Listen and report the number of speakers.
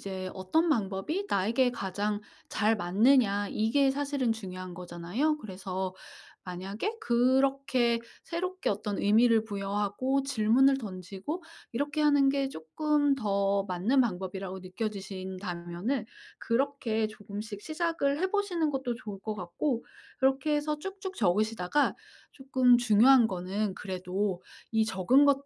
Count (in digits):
1